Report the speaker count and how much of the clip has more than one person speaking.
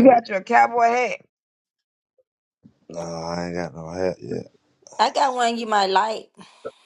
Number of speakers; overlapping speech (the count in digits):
3, about 3%